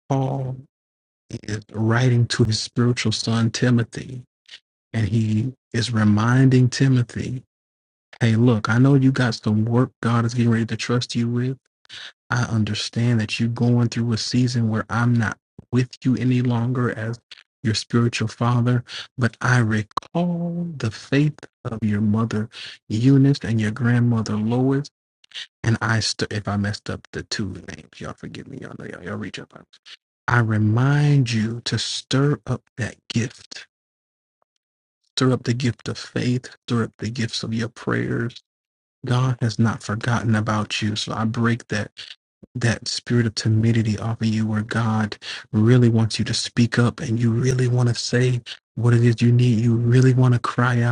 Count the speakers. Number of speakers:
one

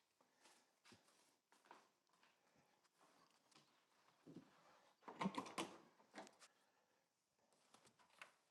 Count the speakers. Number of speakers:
zero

